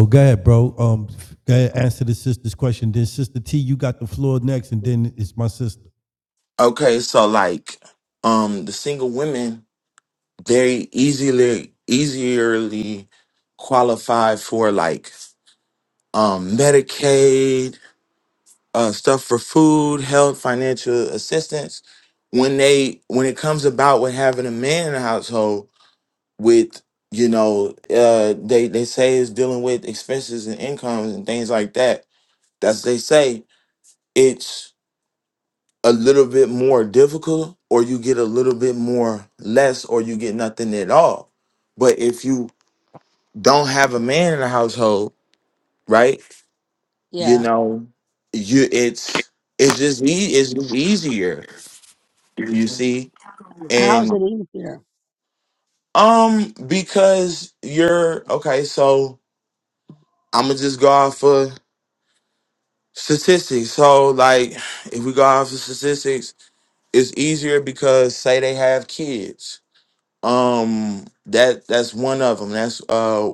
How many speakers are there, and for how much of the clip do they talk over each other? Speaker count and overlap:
3, about 1%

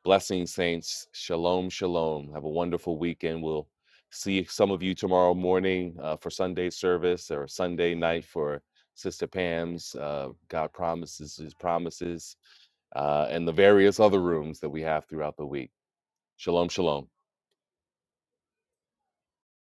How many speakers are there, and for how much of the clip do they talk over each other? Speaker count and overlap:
1, no overlap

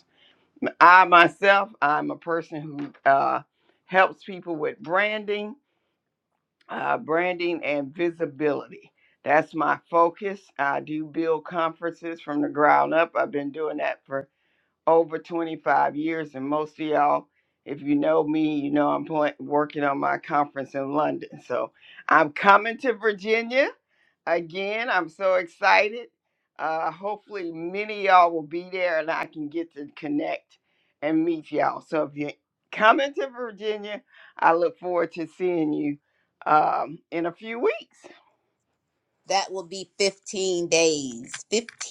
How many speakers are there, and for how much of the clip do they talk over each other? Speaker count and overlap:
2, no overlap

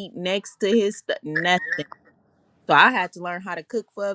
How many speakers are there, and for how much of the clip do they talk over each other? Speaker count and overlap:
1, no overlap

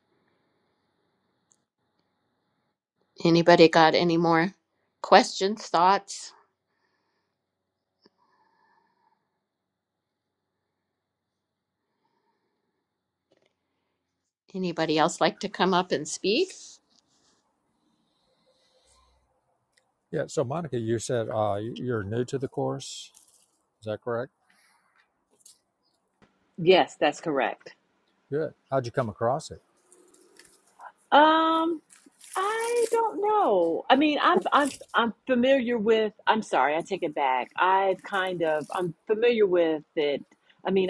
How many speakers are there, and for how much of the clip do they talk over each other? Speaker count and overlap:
3, no overlap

